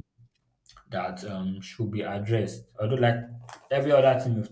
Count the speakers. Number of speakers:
one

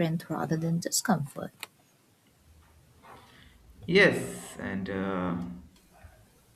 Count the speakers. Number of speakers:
two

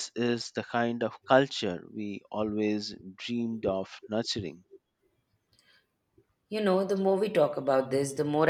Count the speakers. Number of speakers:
two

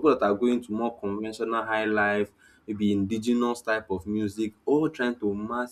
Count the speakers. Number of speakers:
one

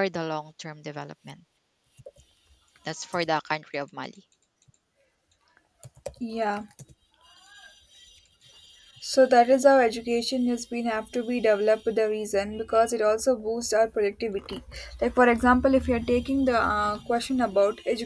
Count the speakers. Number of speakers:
two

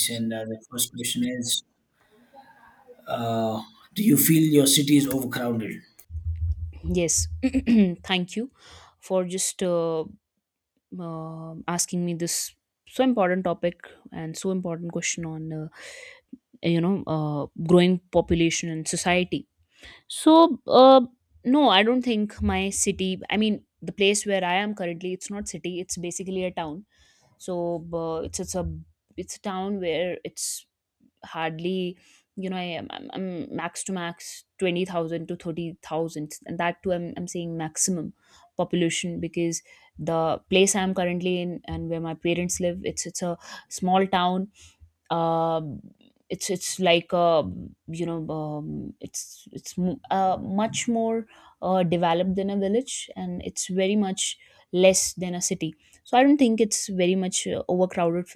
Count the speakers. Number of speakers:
two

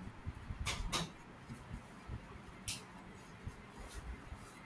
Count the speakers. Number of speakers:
zero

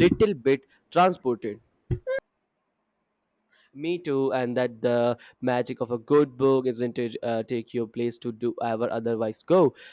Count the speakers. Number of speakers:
one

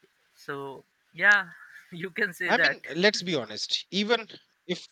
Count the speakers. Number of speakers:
two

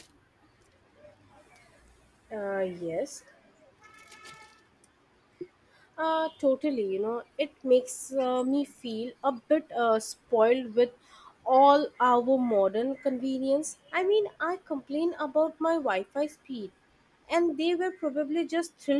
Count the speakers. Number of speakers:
one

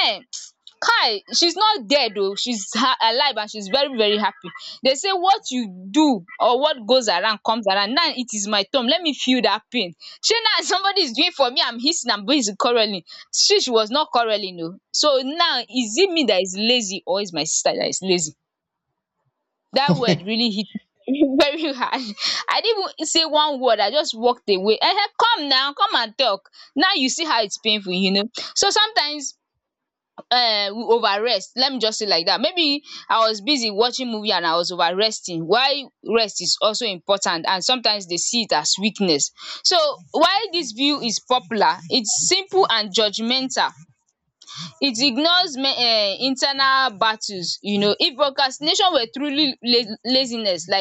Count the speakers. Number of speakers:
one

